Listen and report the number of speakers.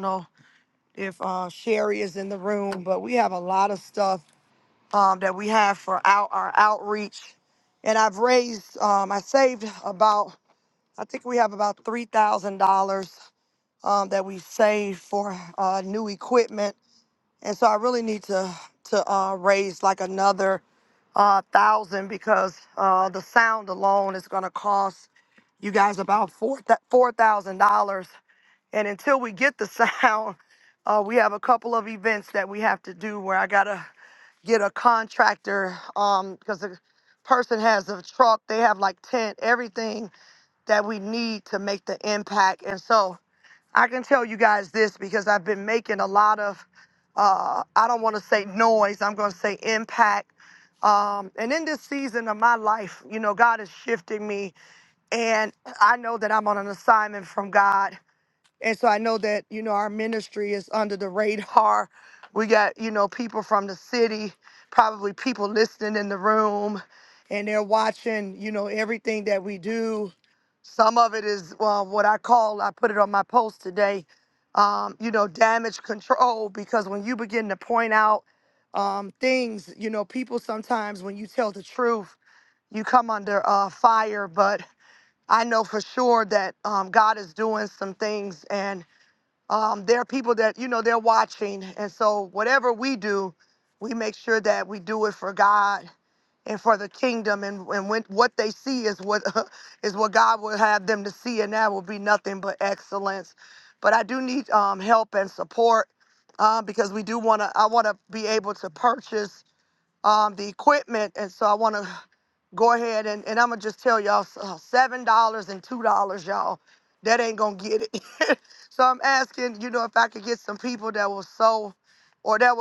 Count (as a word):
one